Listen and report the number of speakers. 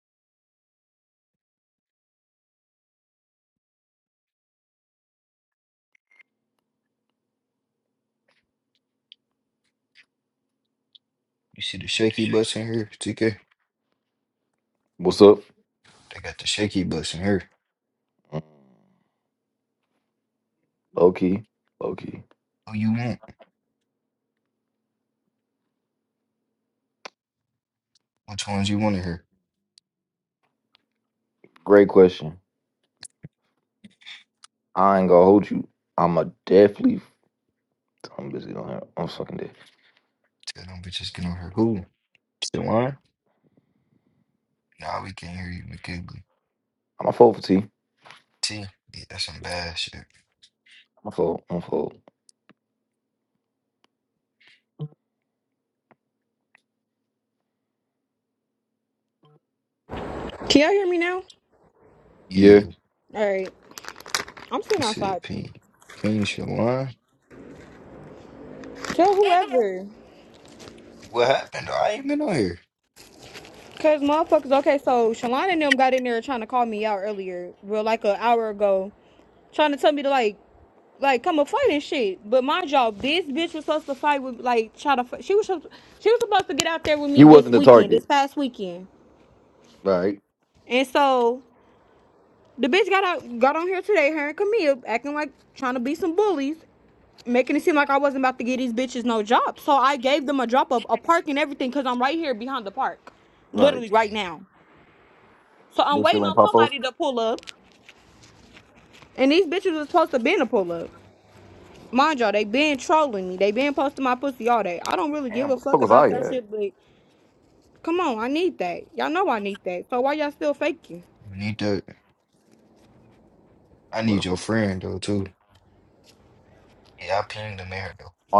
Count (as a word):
three